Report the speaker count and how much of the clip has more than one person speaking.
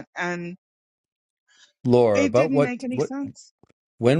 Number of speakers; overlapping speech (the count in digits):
2, about 23%